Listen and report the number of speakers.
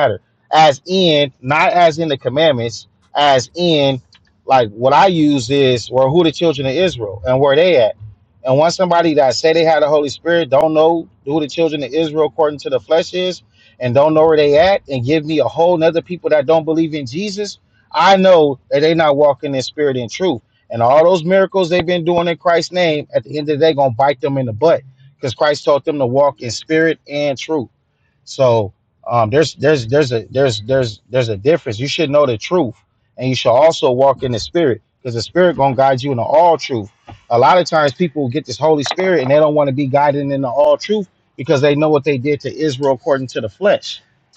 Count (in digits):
1